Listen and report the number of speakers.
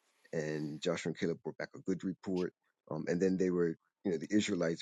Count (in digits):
1